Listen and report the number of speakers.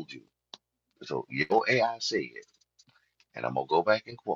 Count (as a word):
one